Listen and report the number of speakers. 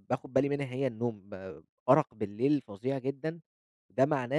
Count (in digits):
1